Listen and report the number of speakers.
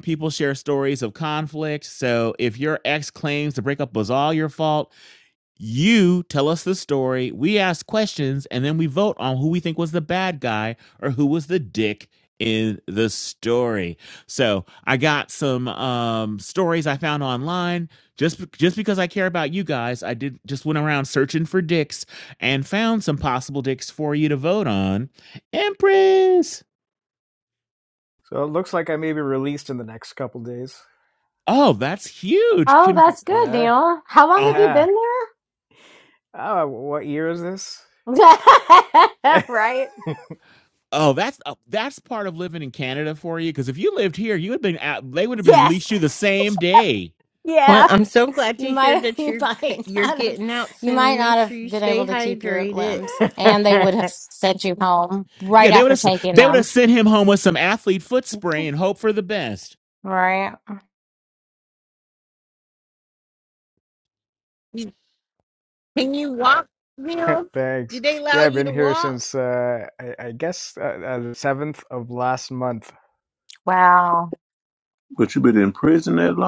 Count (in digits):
5